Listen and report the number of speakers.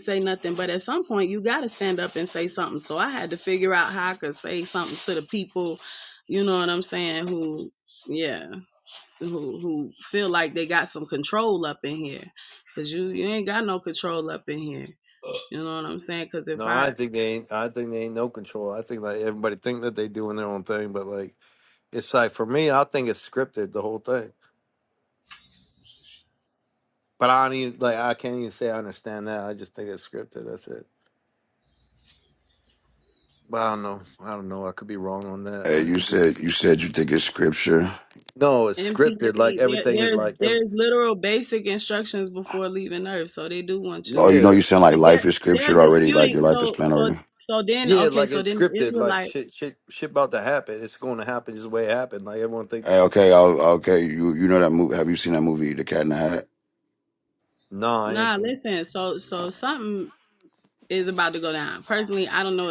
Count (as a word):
three